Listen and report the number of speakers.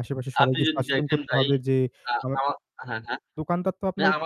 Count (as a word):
two